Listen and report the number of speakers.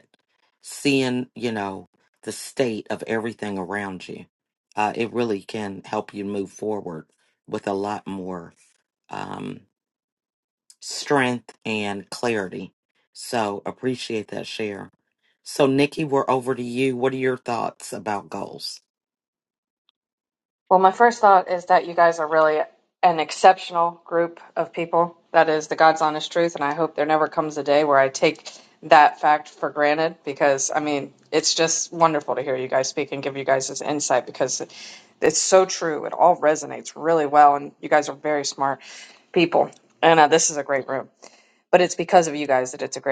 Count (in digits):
2